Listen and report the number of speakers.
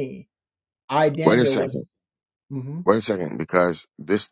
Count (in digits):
2